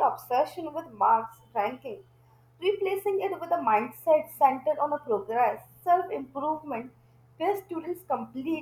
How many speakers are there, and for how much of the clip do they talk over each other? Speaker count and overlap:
1, no overlap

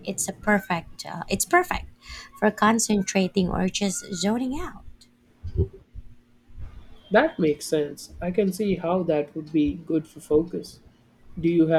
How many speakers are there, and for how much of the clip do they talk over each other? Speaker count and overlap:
2, no overlap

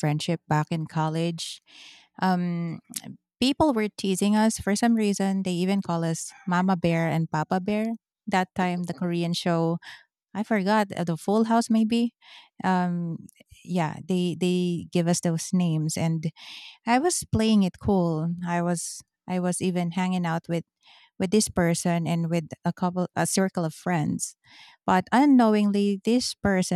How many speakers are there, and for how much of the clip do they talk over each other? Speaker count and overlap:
1, no overlap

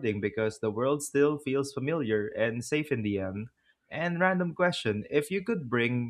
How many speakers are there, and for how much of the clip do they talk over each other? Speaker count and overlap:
1, no overlap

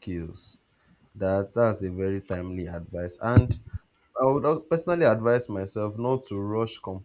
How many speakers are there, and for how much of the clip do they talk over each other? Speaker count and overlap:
1, no overlap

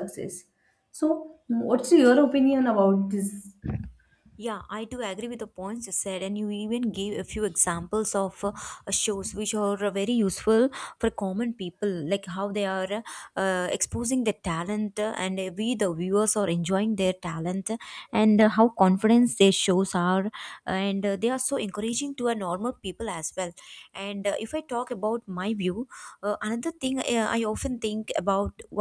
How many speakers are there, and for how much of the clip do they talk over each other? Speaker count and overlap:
2, no overlap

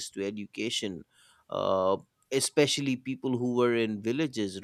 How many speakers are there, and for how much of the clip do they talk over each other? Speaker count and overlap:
1, no overlap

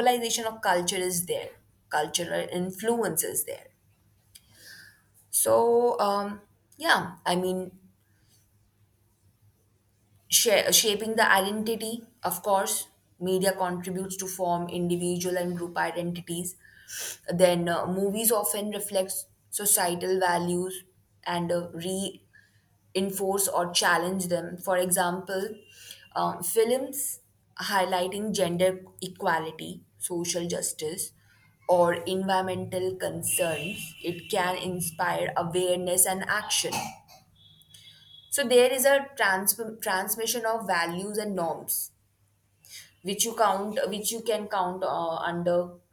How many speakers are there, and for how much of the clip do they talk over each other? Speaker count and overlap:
1, no overlap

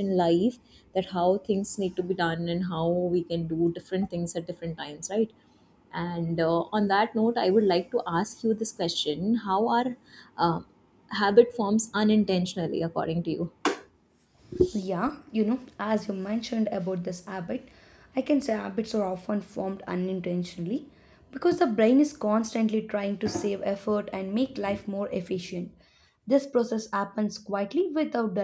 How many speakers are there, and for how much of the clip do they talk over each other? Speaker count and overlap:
2, no overlap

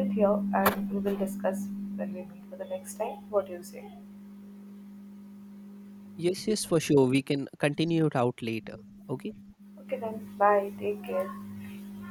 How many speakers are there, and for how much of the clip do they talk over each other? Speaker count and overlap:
2, no overlap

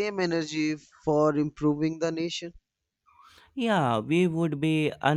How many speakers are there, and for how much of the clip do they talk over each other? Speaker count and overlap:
2, no overlap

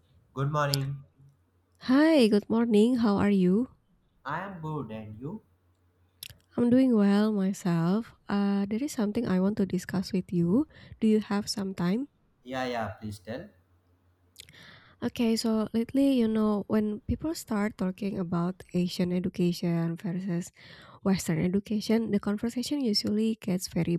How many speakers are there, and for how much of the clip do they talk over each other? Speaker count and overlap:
2, no overlap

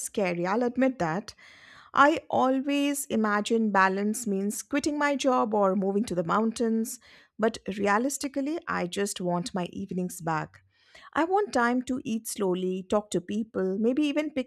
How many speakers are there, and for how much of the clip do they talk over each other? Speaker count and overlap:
1, no overlap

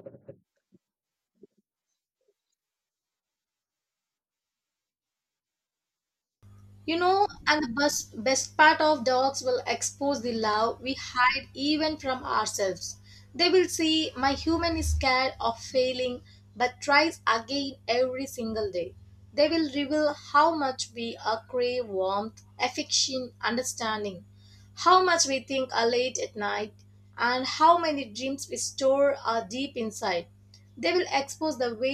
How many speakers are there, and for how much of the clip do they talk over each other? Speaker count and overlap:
1, no overlap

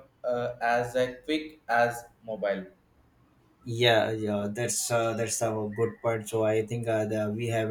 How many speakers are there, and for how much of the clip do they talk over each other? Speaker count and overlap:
2, no overlap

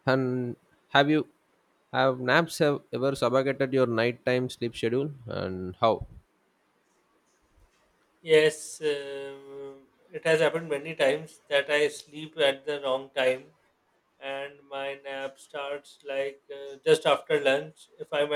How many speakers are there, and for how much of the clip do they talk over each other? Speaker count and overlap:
2, no overlap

